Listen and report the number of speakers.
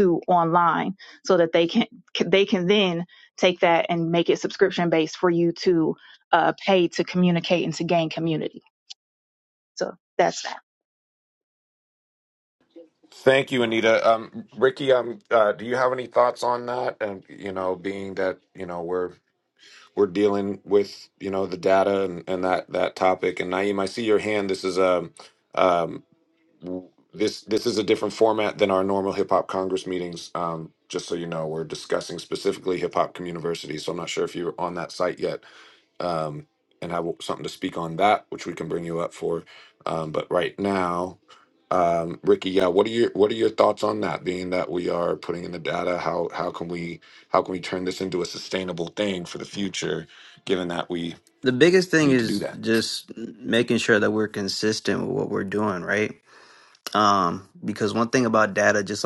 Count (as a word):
three